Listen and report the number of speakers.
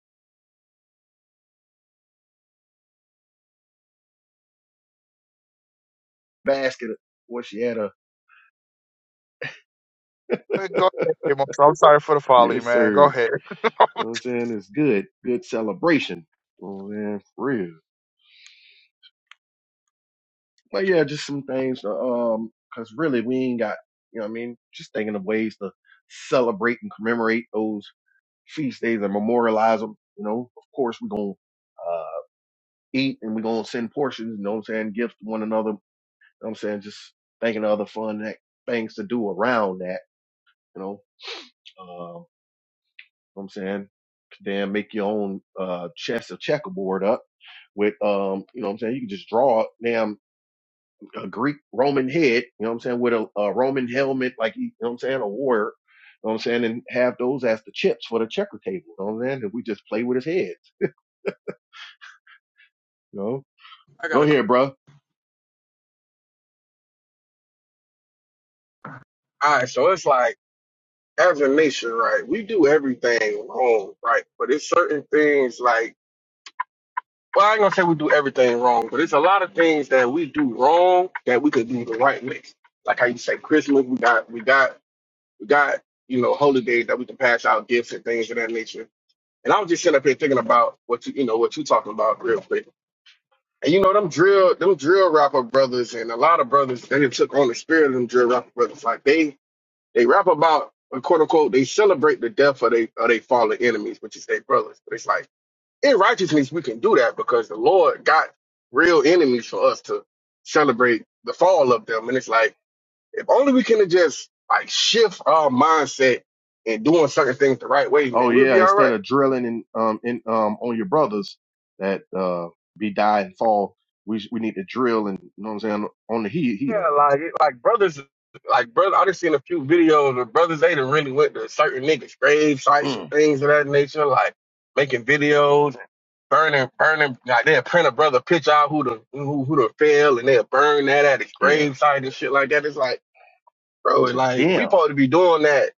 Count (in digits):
3